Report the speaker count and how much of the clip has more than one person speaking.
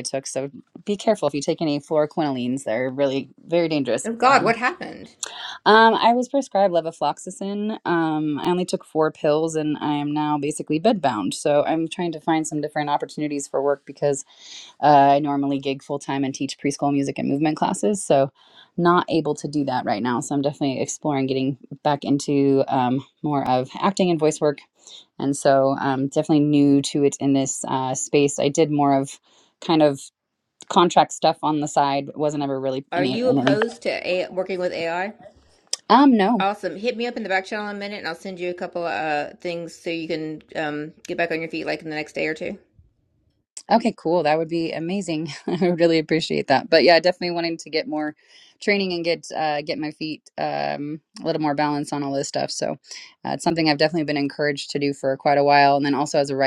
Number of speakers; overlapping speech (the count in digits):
2, about 2%